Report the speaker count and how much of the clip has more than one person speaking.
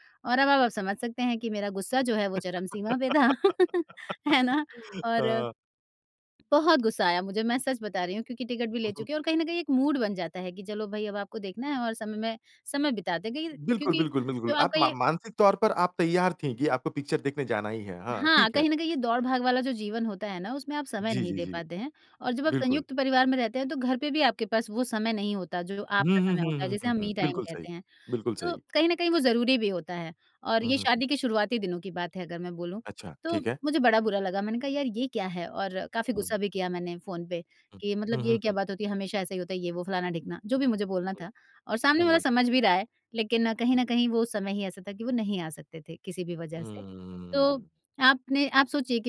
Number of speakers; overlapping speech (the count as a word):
two, about 13%